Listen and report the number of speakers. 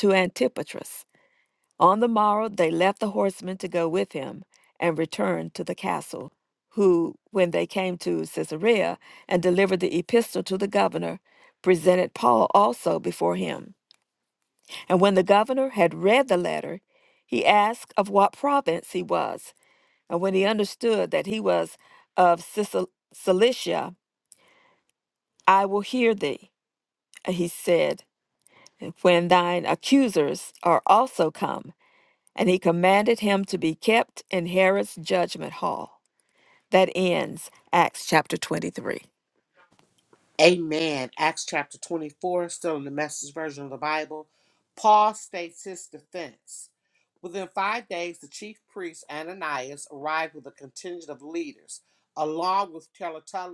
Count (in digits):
2